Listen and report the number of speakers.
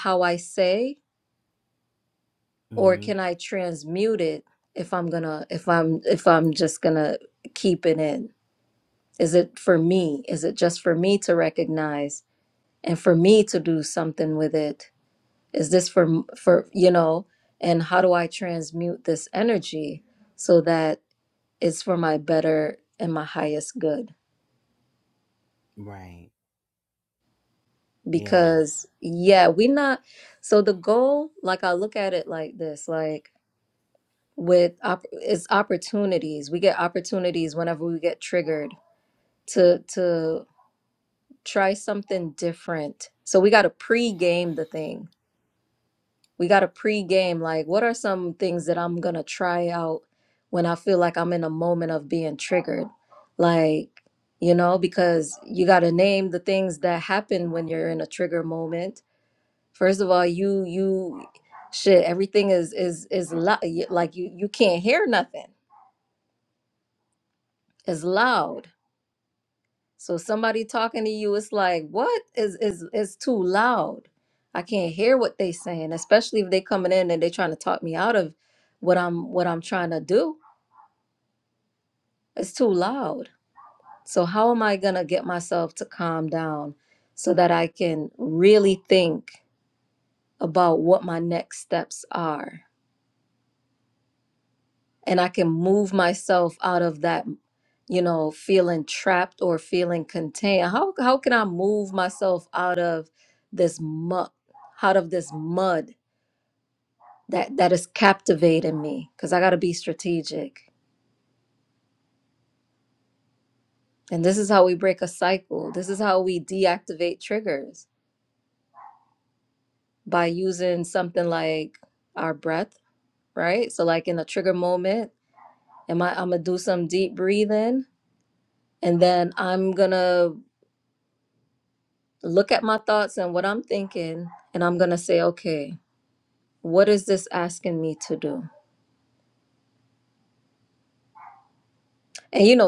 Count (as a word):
two